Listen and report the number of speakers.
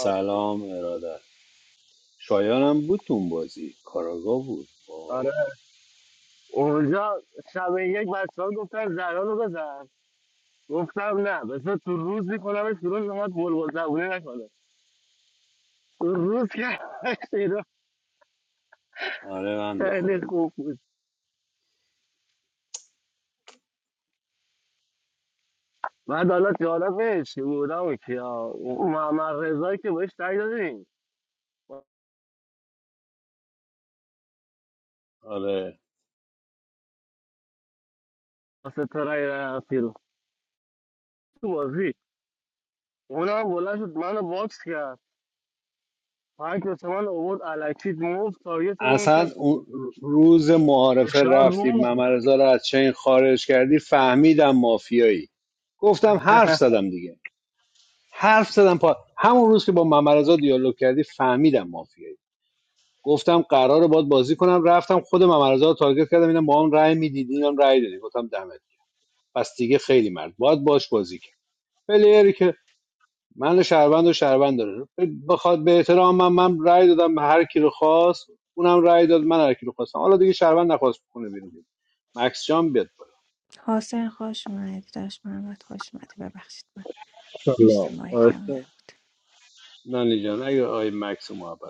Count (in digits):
3